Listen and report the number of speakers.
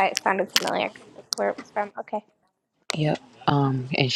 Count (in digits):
2